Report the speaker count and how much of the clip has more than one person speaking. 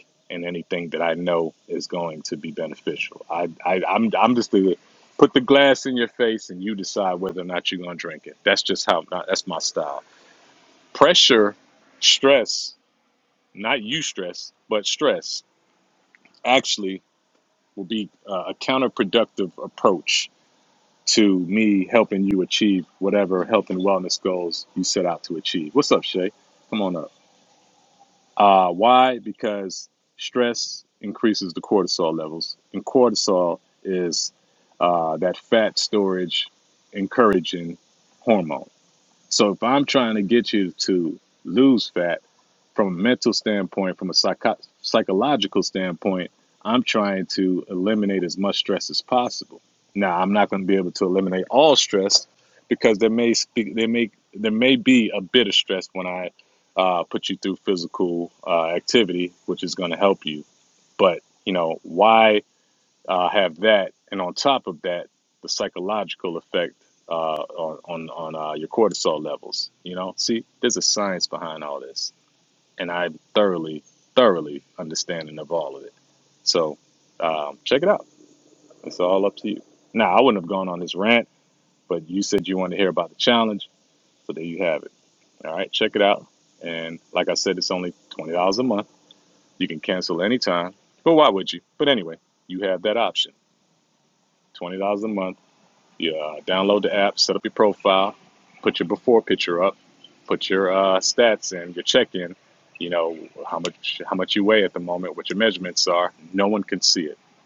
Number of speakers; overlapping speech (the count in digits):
1, no overlap